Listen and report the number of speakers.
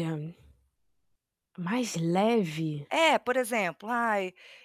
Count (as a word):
two